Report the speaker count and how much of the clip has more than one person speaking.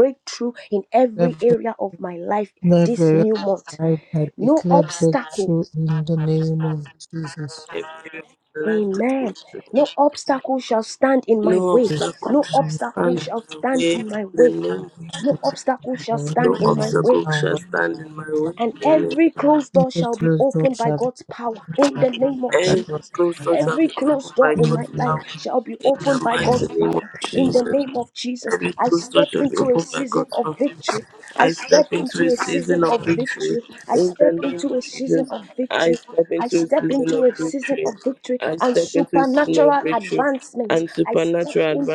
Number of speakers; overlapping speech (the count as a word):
three, about 56%